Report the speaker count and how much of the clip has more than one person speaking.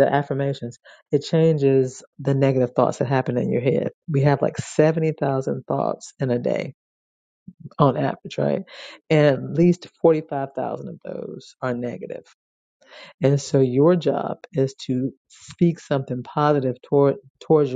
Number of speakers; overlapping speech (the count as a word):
one, no overlap